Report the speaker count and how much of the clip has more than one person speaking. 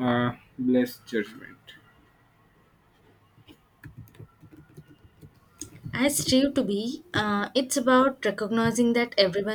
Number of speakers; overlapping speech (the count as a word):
two, no overlap